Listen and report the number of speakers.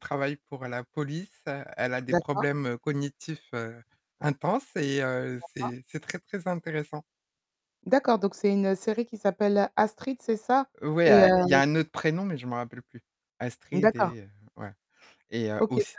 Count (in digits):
2